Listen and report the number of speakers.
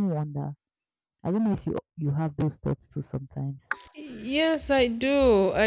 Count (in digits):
2